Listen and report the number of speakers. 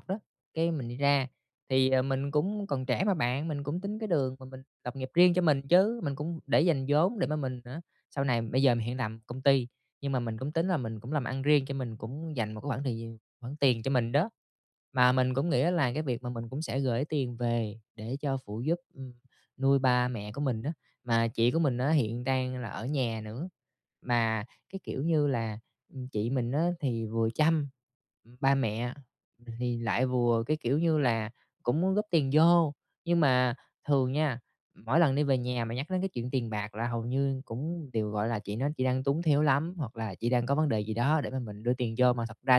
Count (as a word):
one